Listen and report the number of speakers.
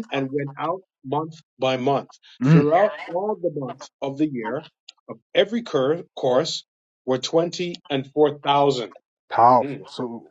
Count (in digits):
2